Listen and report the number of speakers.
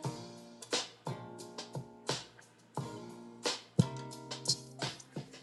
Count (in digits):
0